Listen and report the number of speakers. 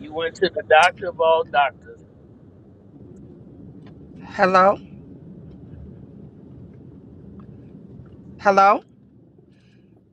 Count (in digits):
2